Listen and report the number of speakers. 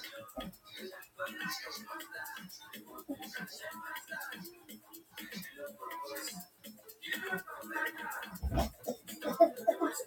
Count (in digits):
0